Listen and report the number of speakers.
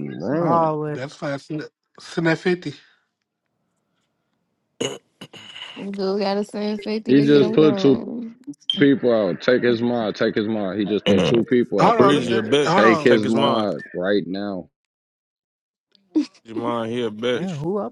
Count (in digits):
5